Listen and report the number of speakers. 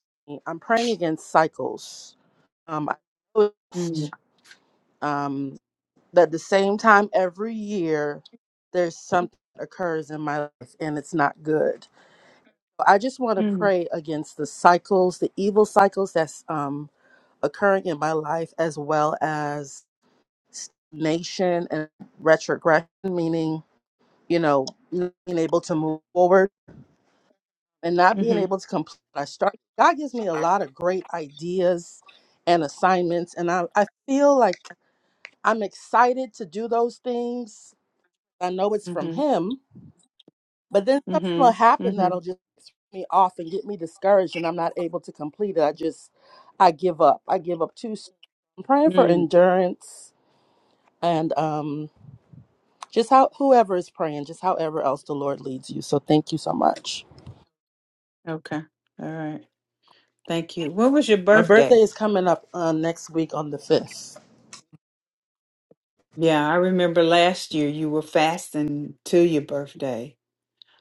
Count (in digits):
2